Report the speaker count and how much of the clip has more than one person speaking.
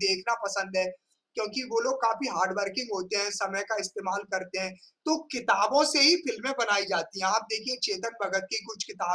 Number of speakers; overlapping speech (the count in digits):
1, no overlap